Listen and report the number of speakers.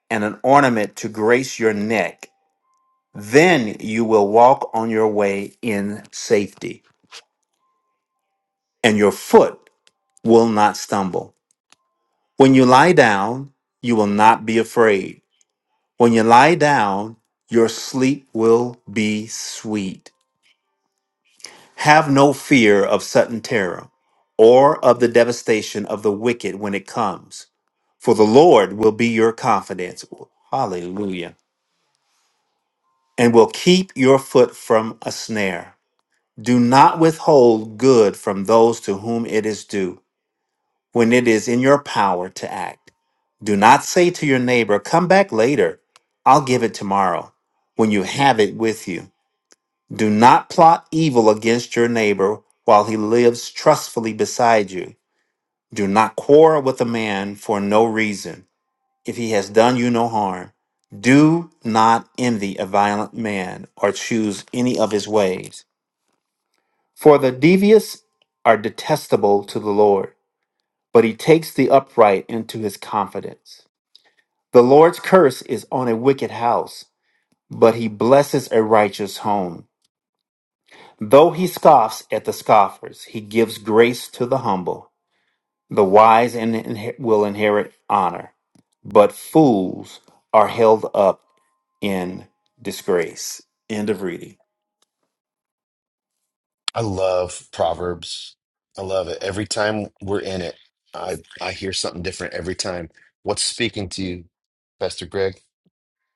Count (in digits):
2